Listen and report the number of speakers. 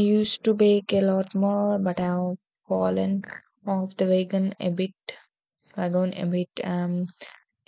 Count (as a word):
one